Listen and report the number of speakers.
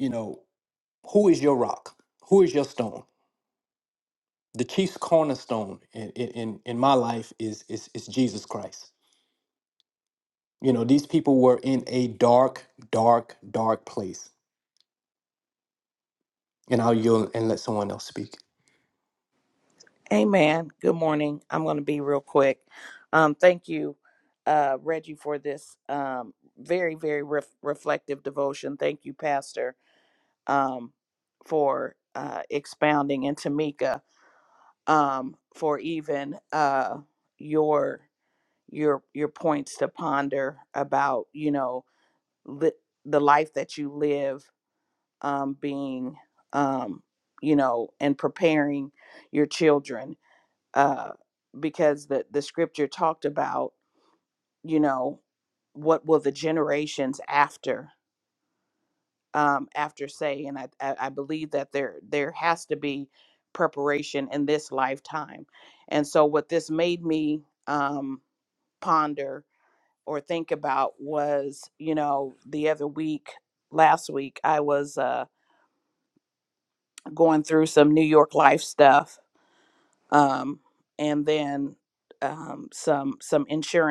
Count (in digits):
2